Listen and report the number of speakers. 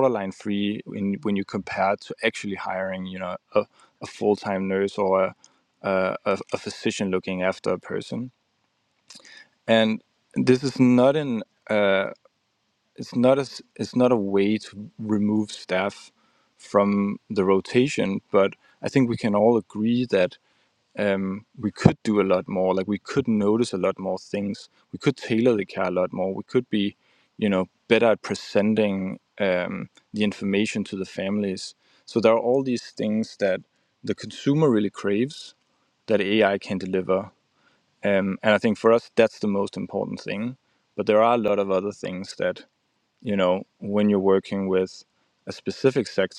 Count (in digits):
1